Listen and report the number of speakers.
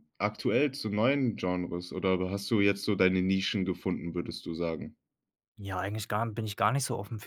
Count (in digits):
2